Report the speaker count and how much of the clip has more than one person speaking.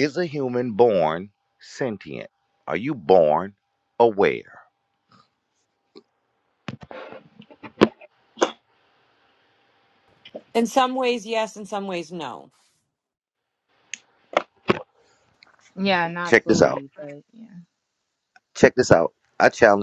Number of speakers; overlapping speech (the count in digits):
3, about 3%